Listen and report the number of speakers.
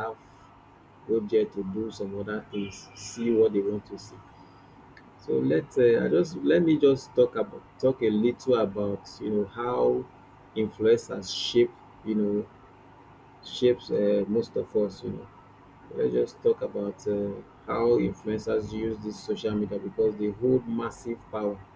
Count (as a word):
one